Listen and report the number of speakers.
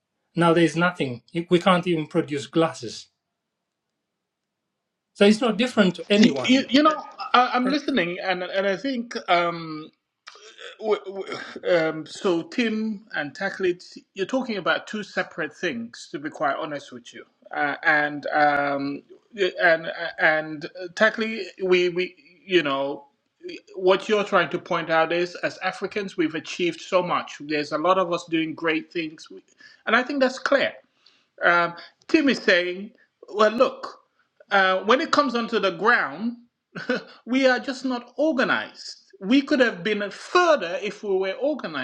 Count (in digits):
2